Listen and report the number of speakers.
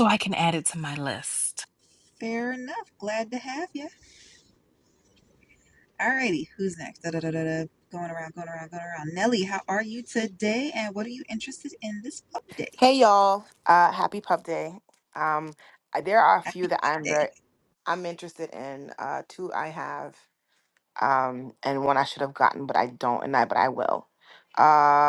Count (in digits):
3